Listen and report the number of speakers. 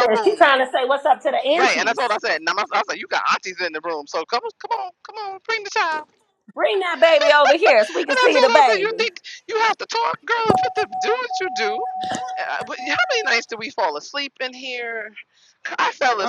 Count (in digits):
2